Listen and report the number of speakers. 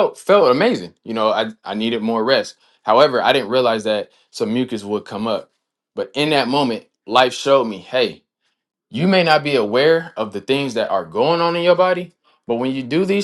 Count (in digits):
1